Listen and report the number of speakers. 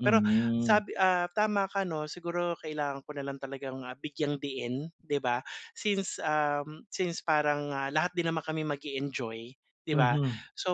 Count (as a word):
two